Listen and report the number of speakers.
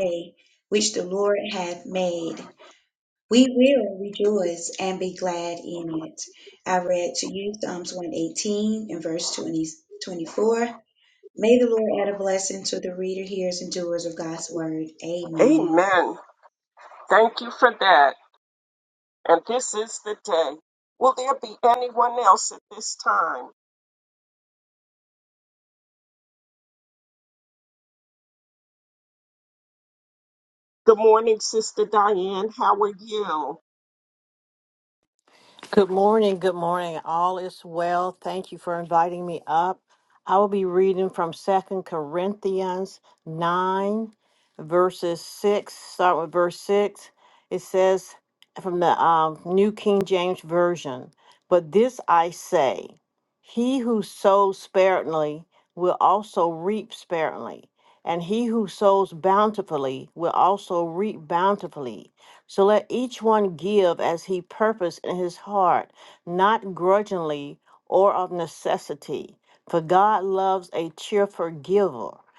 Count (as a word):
three